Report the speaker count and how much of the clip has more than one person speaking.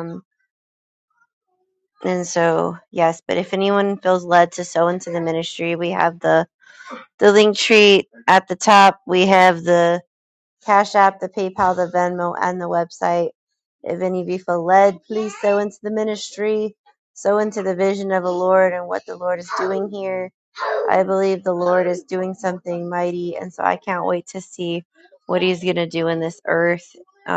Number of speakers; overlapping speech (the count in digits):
1, no overlap